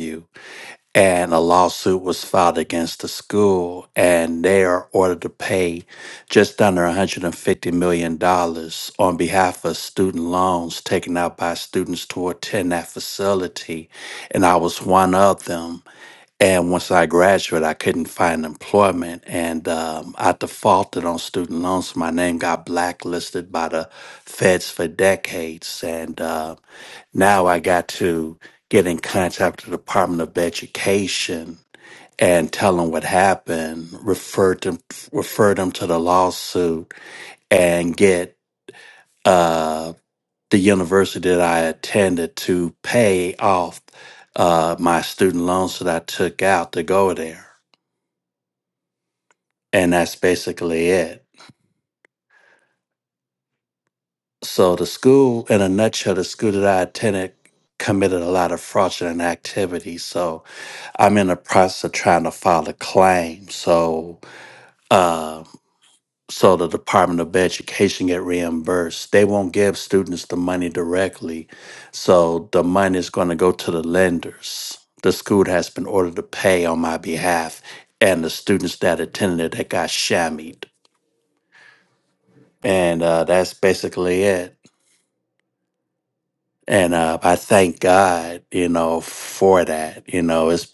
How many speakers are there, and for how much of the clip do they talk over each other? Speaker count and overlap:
one, no overlap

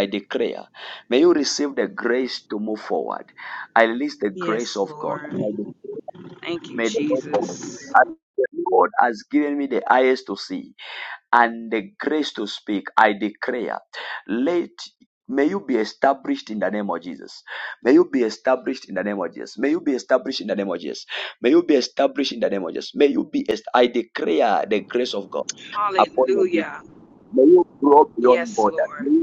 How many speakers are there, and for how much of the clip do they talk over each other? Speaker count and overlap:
two, about 13%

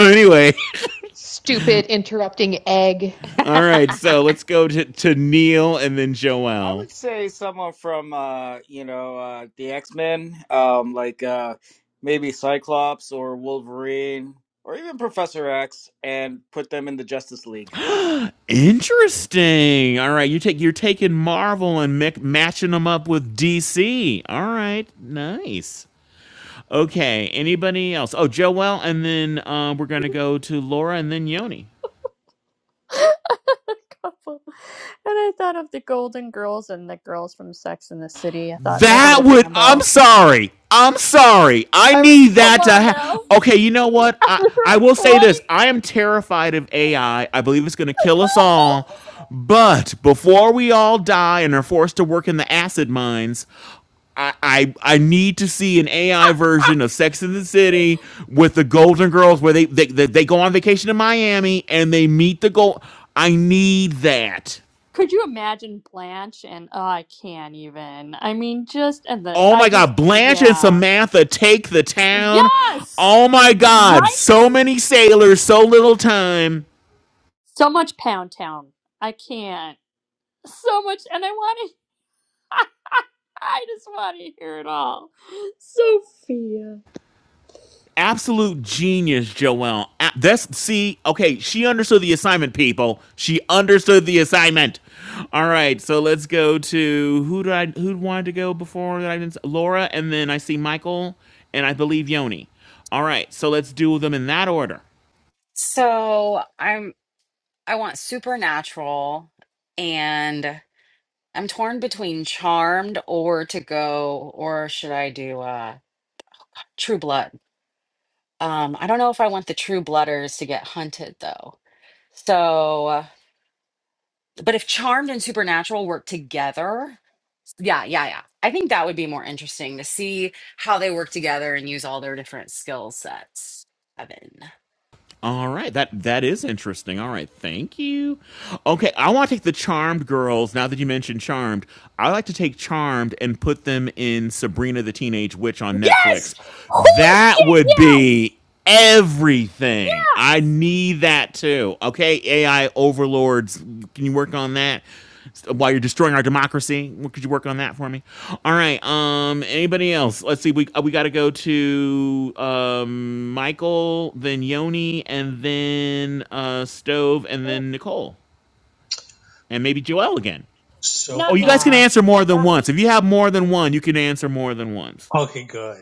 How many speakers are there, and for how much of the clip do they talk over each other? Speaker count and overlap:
six, about 5%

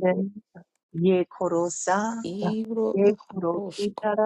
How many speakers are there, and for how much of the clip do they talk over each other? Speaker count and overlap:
two, about 15%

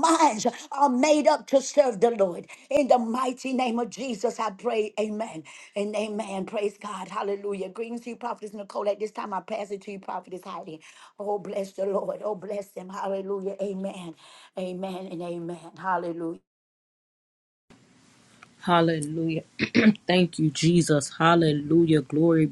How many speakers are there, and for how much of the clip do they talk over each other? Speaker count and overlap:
two, no overlap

